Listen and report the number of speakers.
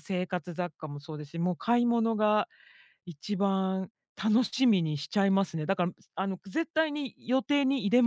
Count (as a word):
one